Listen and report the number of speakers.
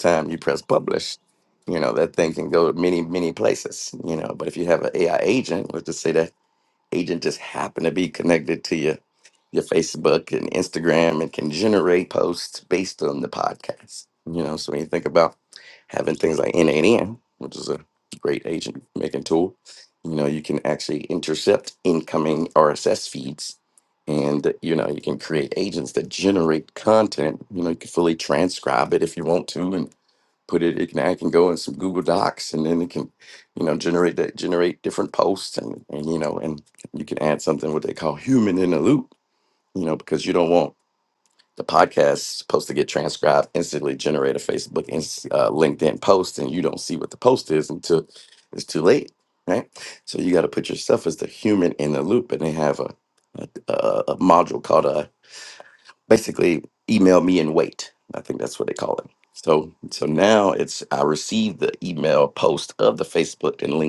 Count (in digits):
1